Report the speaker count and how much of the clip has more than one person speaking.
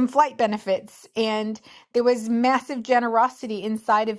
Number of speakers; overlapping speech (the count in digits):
1, no overlap